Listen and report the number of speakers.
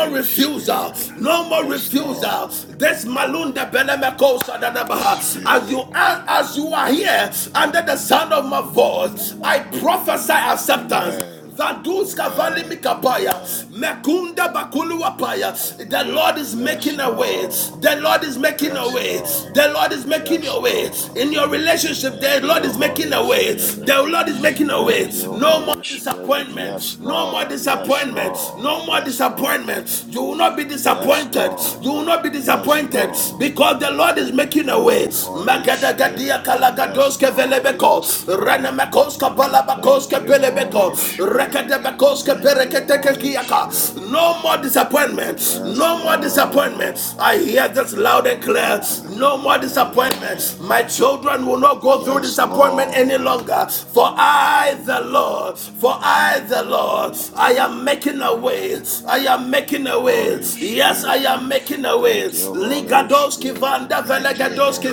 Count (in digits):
2